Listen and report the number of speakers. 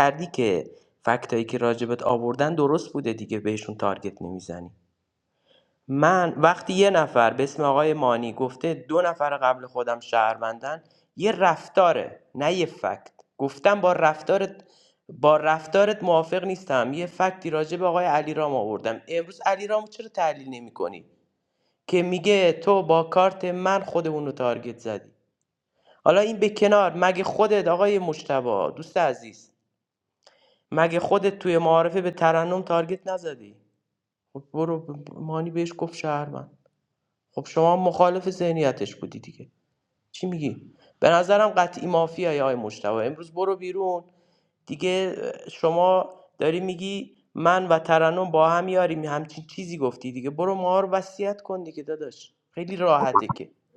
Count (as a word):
one